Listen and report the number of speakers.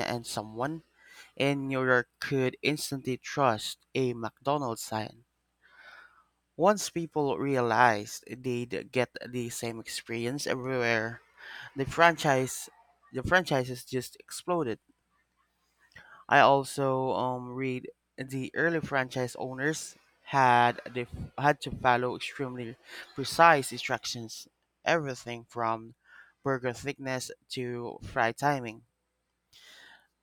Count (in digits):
1